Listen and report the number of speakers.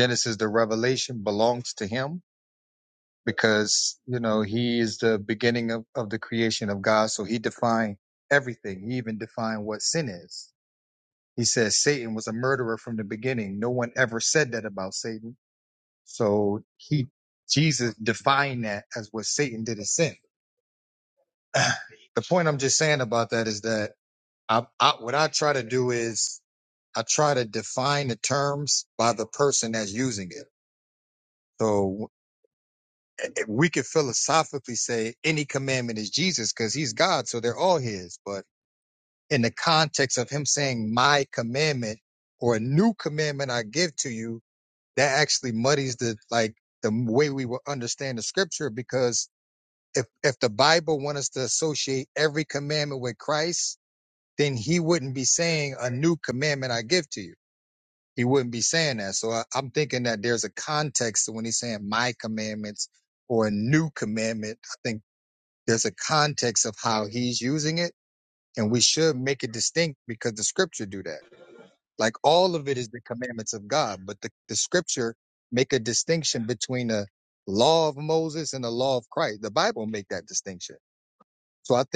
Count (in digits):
1